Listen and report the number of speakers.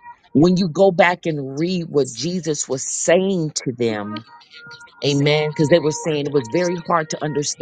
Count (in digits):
1